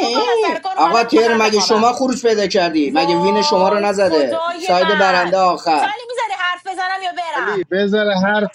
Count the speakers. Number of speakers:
three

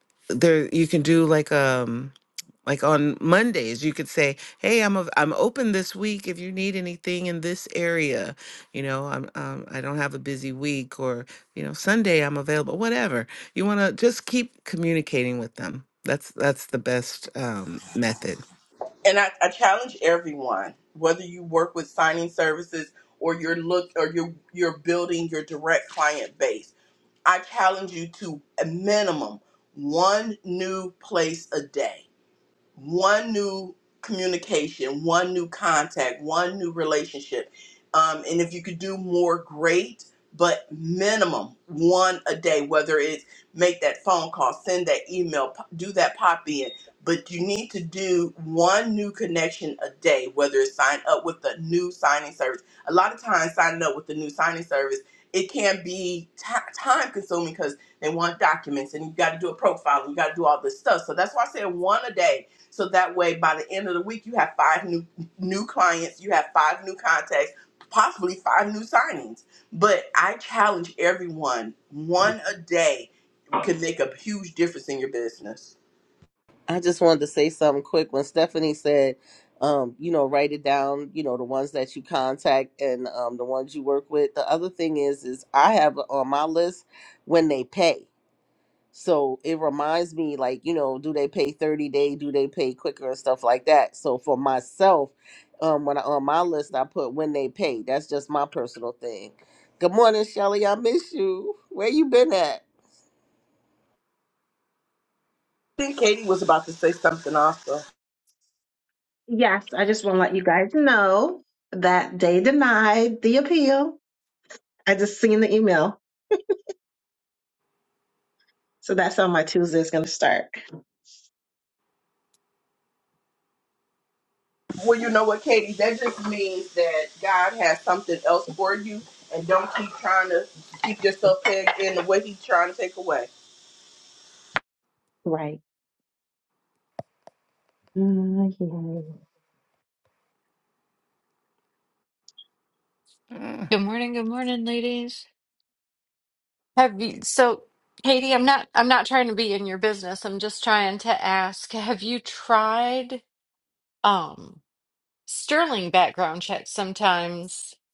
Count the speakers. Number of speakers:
five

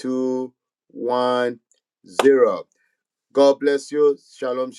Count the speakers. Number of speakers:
one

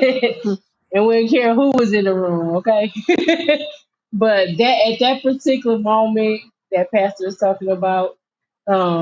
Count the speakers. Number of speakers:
one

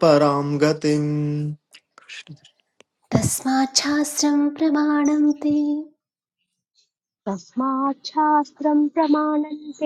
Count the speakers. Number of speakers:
three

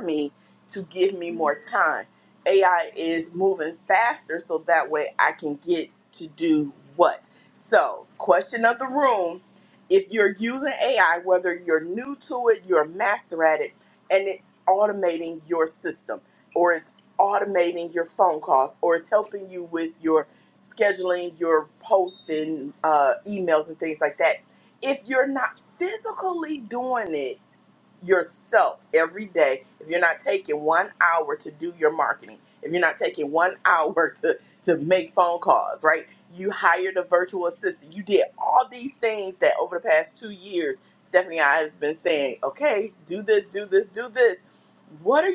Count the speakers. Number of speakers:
one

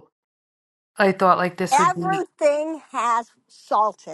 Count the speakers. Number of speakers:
two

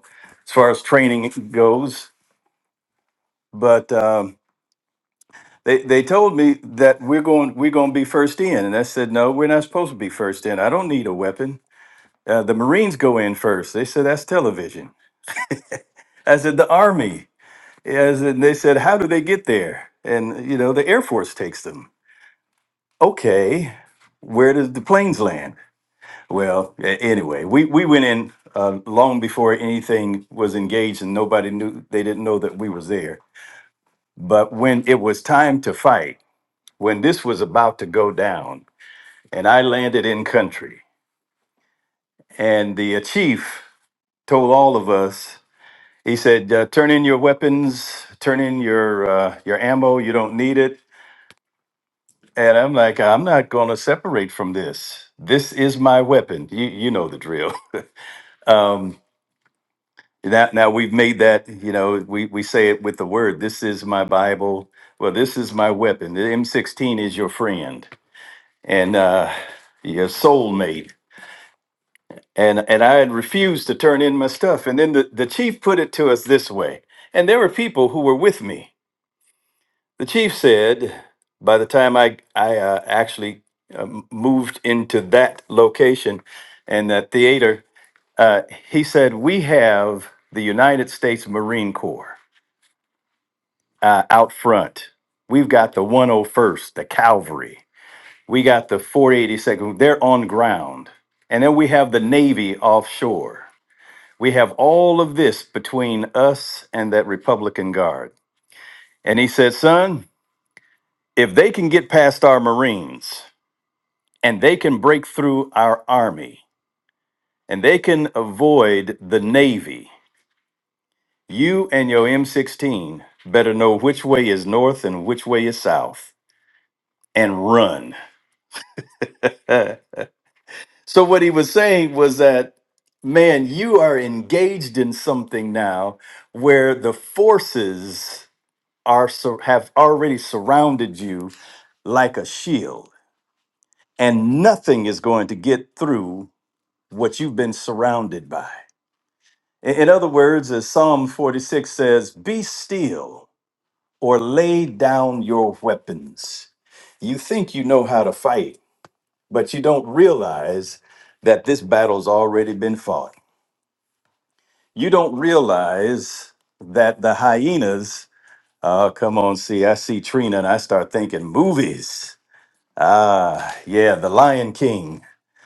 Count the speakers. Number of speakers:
one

